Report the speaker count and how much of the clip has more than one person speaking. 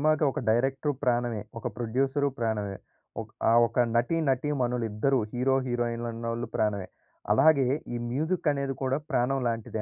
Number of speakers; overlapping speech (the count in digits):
1, no overlap